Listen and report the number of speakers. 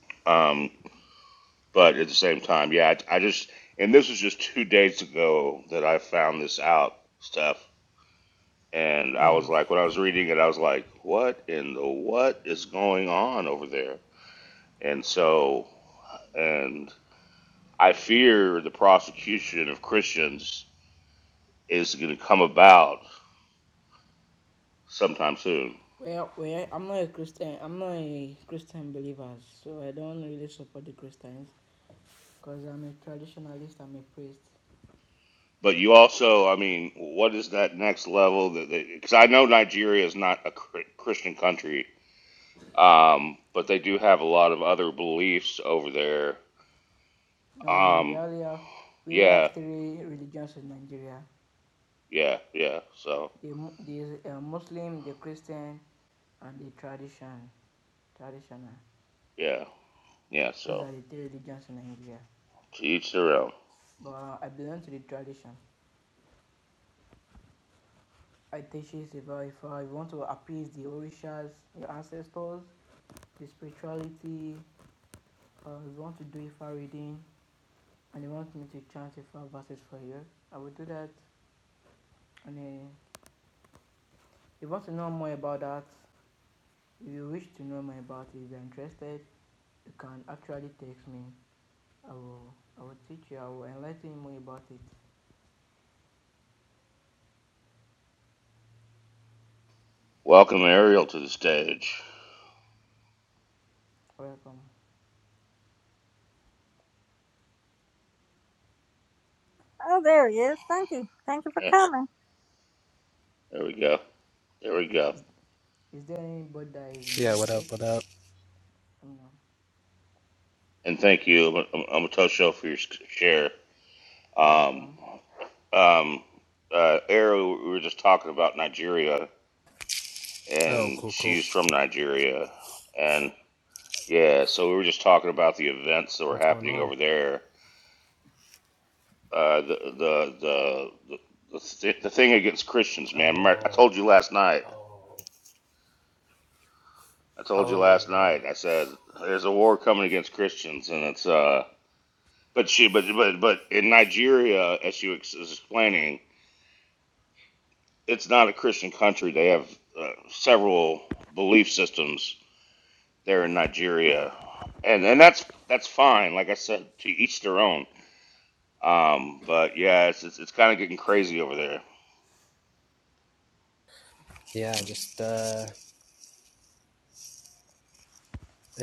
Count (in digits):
4